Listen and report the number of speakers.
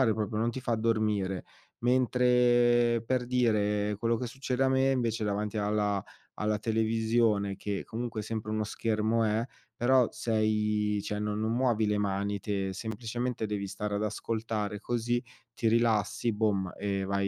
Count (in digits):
1